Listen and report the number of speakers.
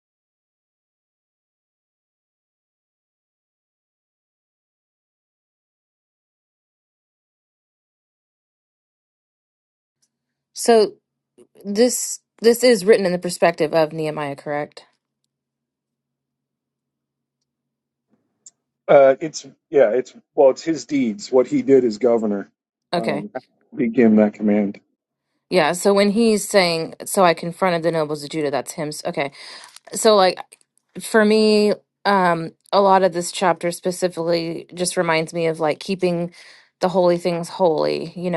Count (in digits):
2